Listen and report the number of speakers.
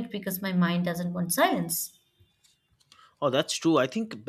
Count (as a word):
two